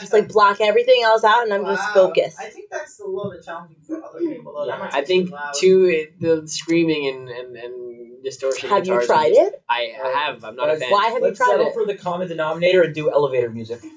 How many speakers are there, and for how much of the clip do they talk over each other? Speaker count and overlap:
four, about 35%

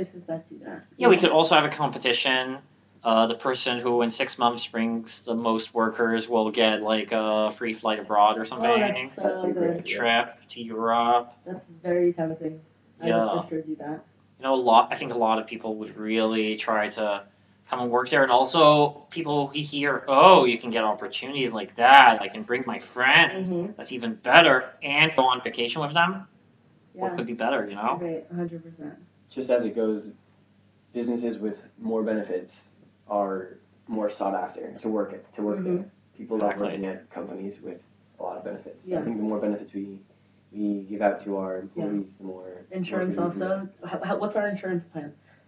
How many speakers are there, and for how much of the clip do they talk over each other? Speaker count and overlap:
three, about 12%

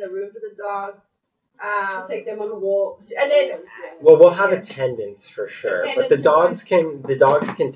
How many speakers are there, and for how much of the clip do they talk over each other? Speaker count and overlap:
three, about 32%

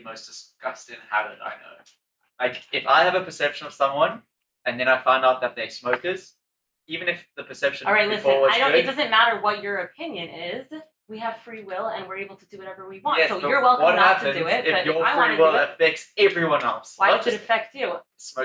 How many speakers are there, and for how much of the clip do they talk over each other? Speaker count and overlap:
two, about 22%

